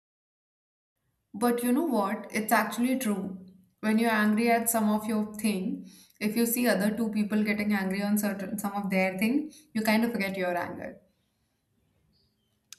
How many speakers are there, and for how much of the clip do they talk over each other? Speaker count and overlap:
1, no overlap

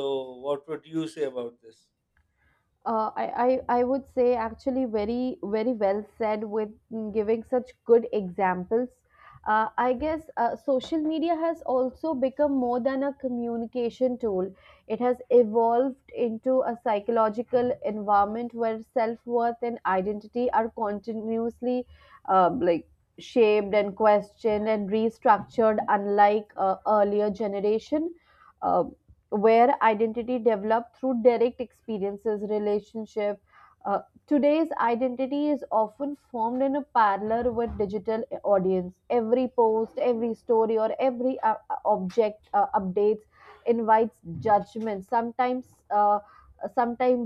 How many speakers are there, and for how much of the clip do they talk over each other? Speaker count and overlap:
2, no overlap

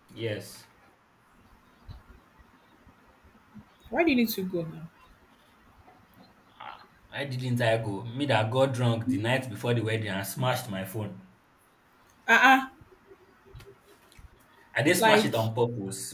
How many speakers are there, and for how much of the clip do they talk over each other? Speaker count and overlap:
2, about 3%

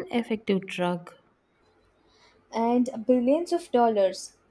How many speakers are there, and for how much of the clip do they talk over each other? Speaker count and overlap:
2, no overlap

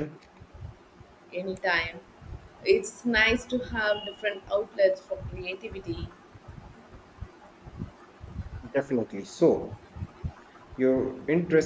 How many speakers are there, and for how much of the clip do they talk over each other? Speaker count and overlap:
2, no overlap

